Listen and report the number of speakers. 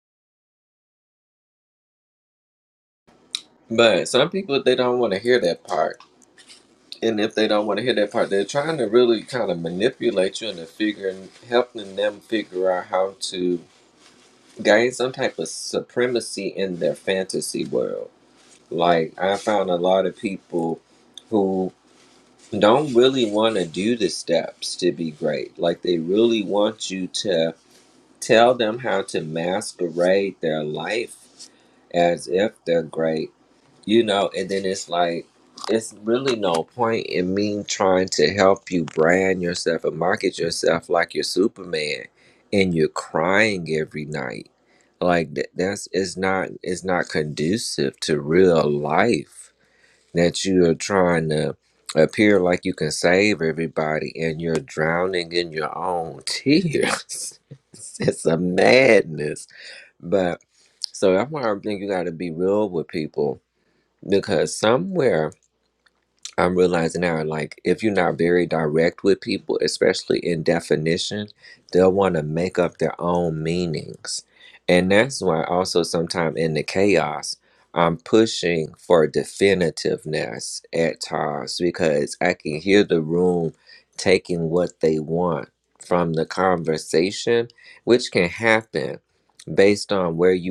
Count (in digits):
1